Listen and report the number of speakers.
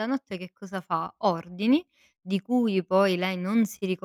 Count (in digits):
1